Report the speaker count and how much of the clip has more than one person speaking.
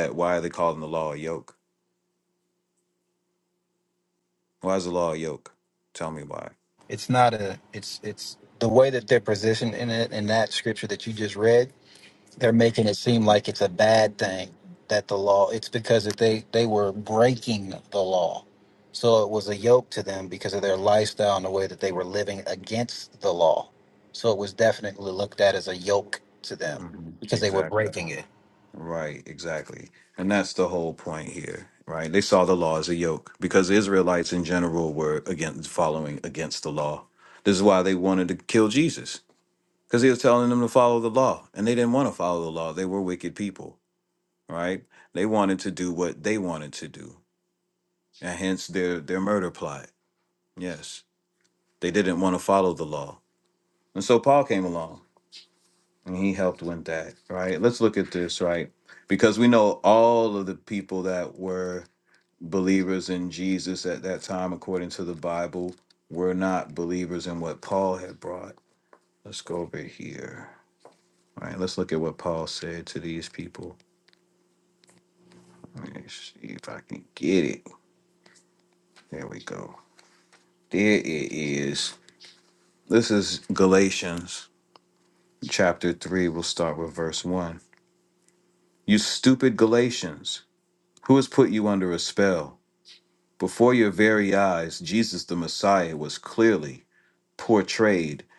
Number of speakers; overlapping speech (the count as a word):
two, about 1%